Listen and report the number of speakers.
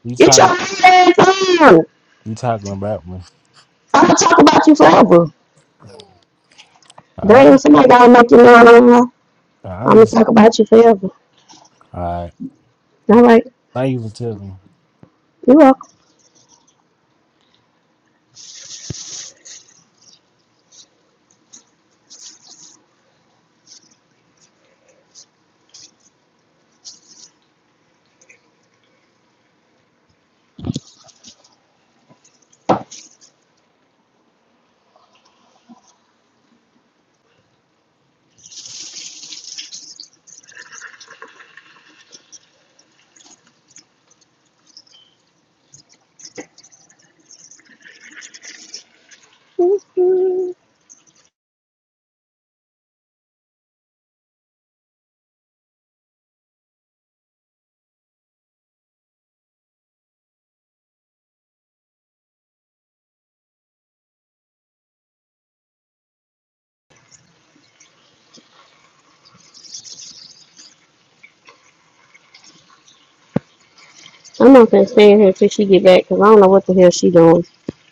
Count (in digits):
2